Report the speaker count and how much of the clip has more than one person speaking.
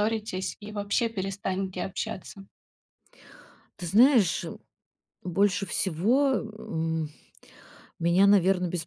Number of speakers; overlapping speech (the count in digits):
2, no overlap